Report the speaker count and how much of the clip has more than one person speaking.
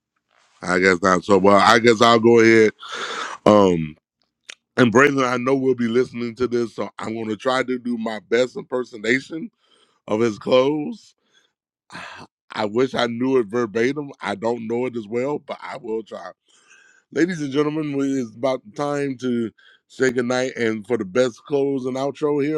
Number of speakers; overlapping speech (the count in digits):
1, no overlap